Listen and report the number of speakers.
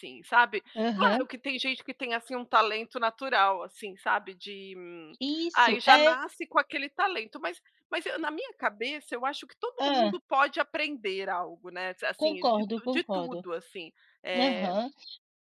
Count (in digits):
2